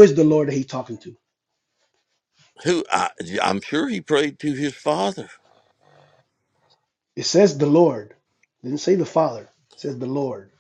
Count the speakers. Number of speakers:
two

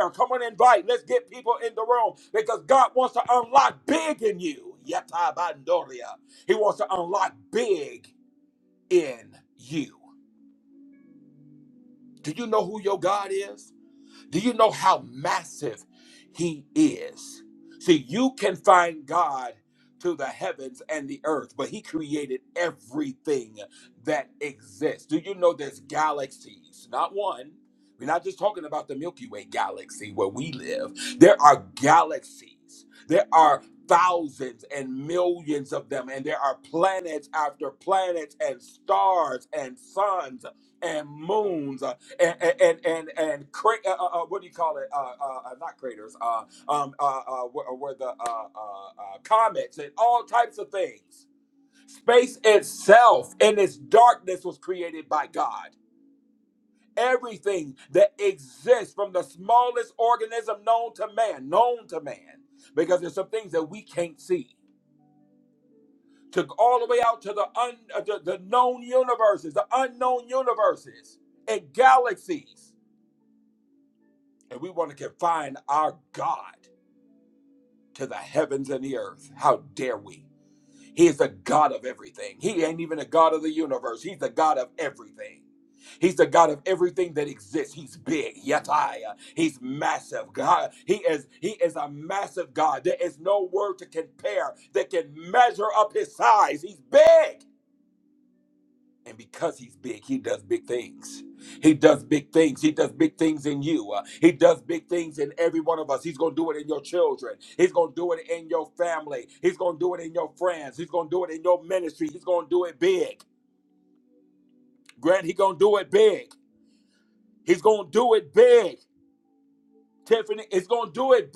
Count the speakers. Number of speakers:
one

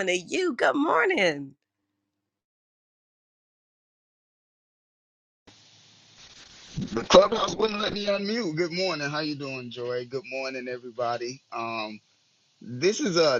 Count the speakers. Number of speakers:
two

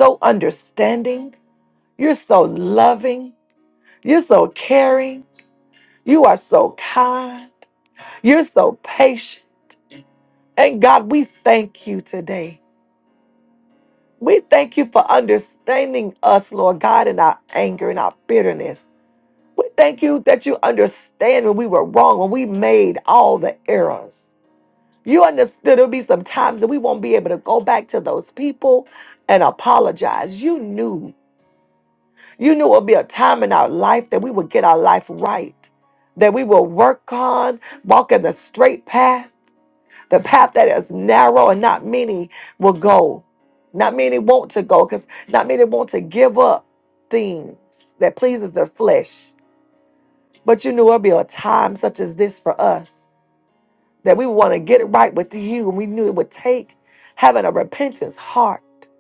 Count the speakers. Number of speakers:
one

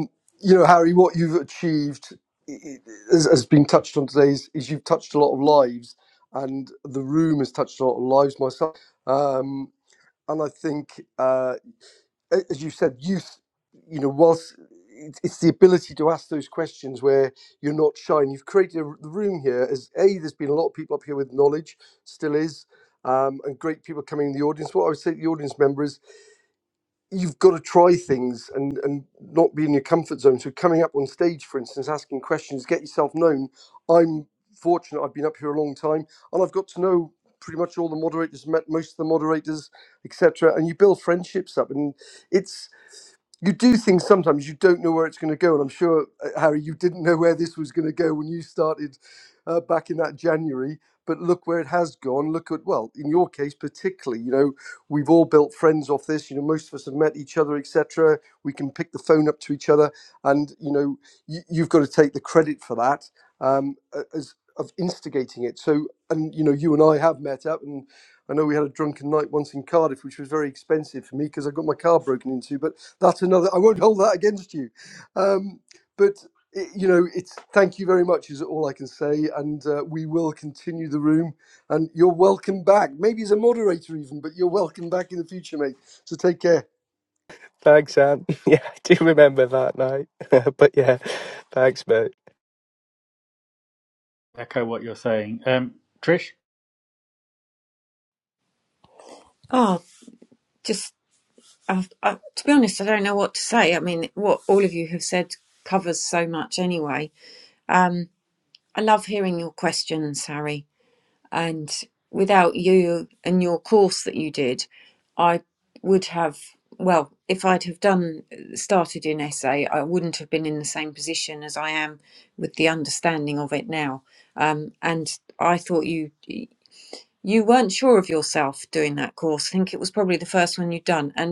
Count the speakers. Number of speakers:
four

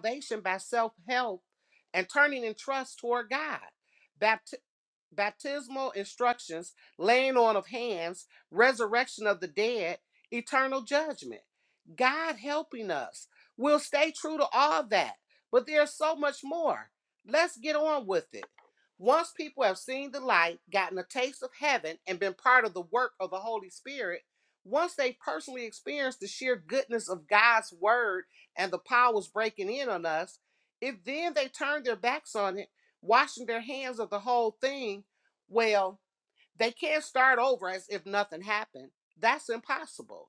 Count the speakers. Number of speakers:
one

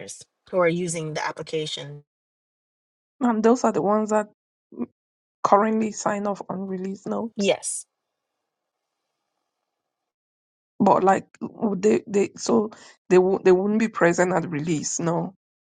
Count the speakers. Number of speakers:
two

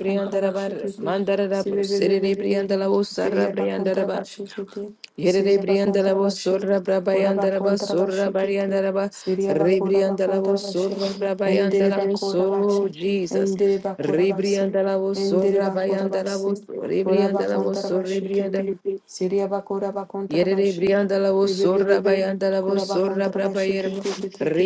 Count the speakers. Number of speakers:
two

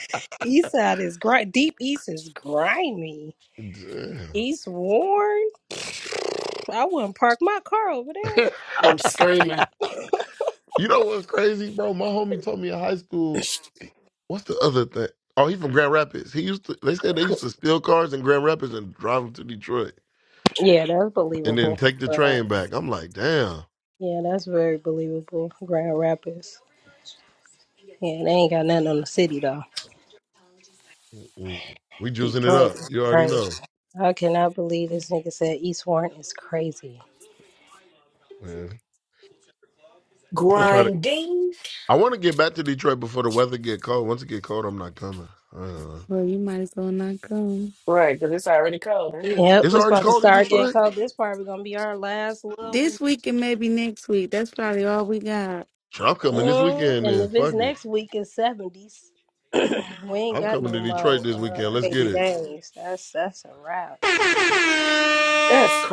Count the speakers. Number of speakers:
four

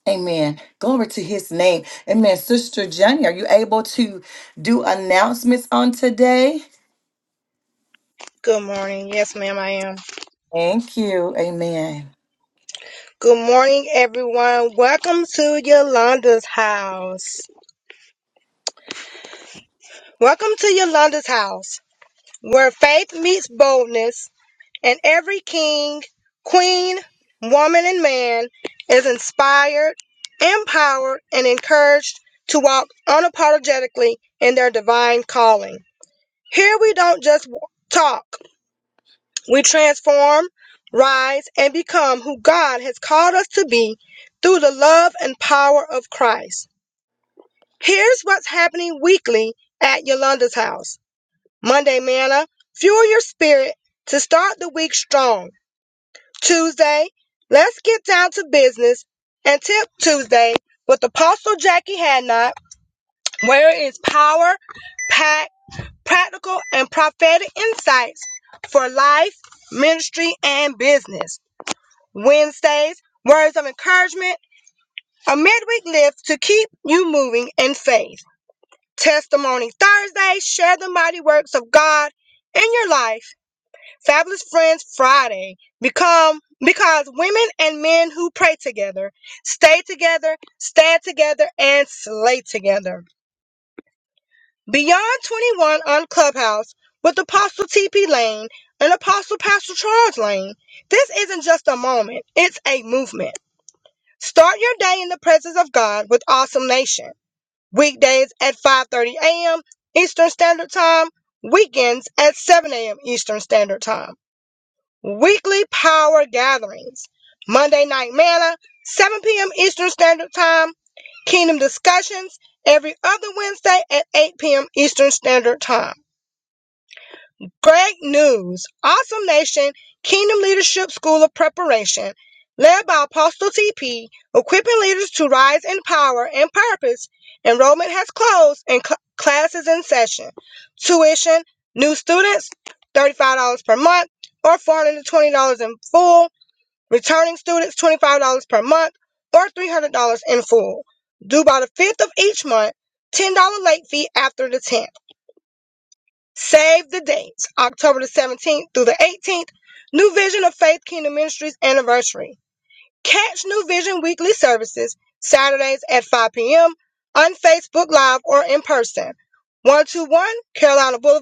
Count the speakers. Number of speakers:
two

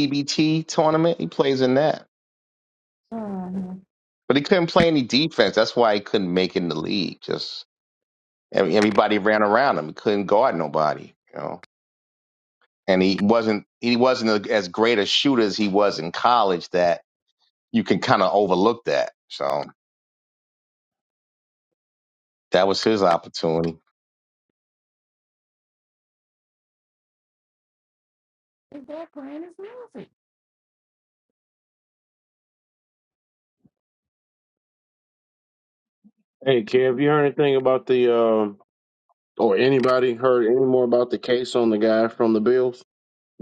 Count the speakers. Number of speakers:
three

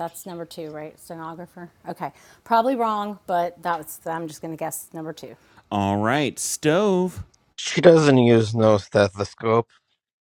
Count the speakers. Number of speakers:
three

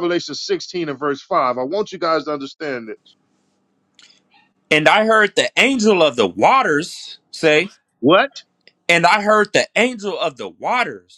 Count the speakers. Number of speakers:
two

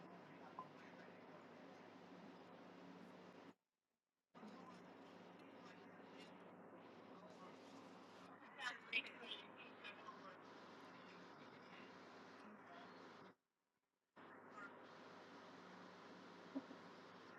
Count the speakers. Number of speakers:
zero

